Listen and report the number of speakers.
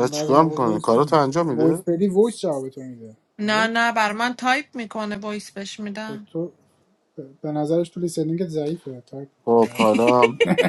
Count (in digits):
3